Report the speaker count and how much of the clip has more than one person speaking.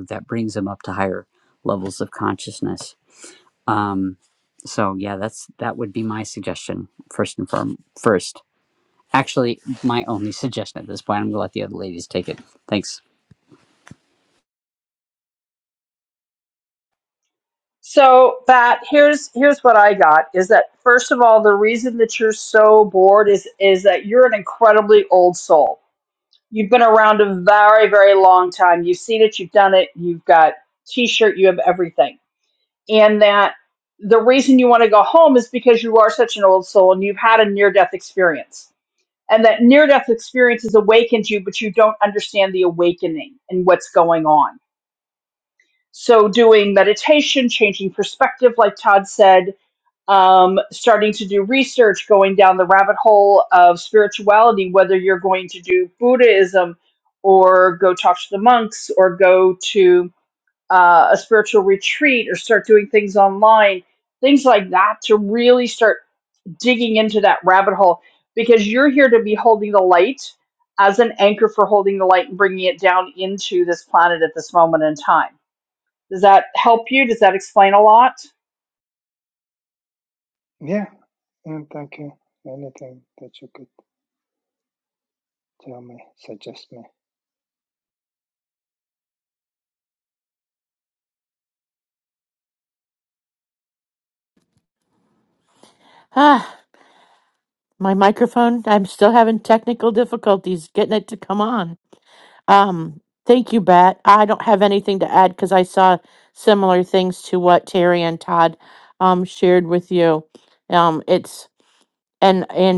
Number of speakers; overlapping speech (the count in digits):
4, no overlap